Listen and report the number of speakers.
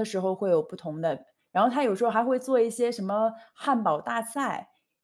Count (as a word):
one